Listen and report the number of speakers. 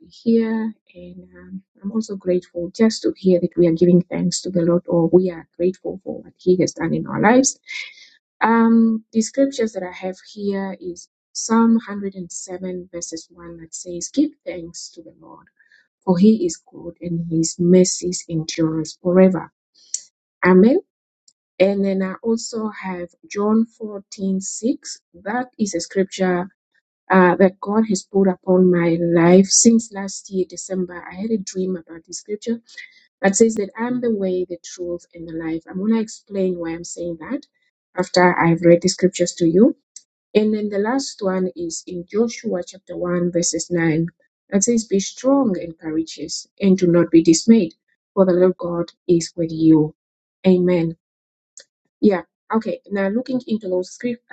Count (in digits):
1